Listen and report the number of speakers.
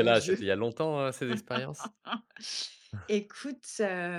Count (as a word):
two